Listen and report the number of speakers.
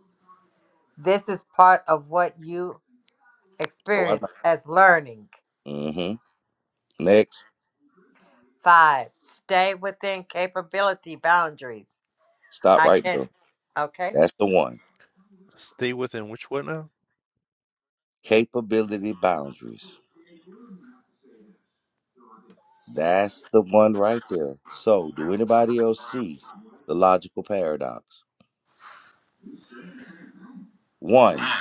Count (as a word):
three